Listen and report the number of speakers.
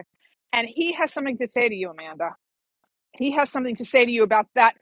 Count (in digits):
1